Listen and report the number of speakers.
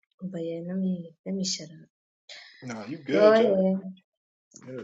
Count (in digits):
2